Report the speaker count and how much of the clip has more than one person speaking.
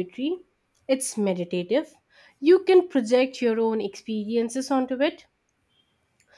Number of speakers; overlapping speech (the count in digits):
1, no overlap